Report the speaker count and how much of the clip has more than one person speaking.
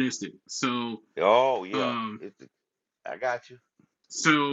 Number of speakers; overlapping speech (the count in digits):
2, about 10%